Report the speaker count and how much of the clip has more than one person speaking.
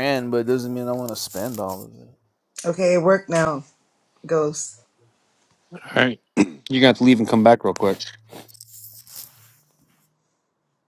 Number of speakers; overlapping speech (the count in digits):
3, no overlap